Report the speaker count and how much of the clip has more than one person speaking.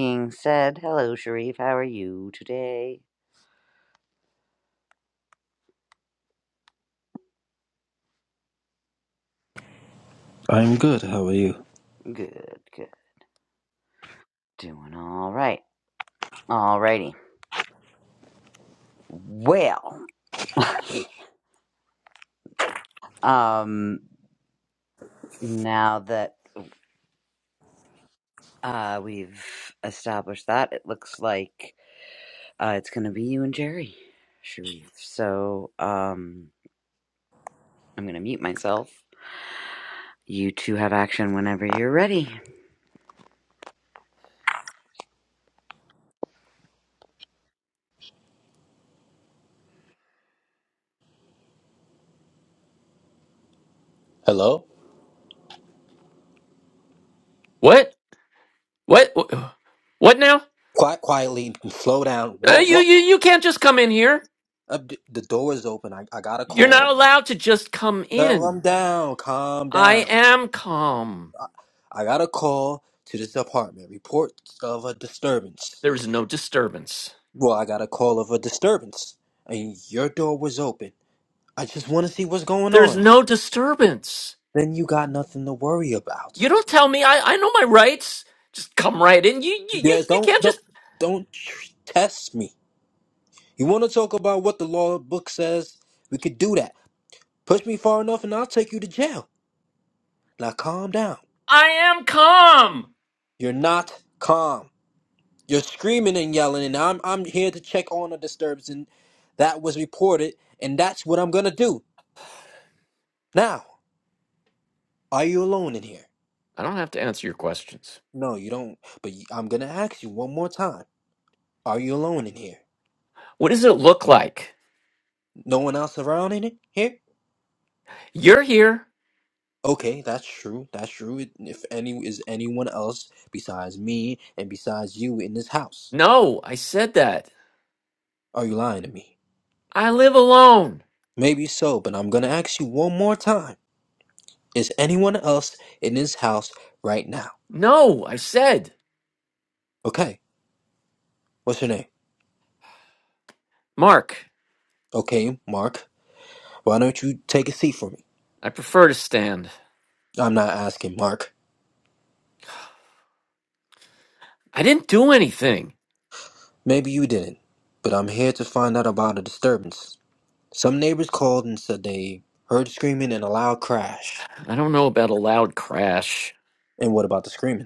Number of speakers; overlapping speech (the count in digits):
3, about 1%